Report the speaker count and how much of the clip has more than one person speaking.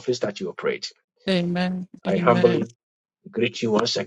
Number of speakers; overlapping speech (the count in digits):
2, about 15%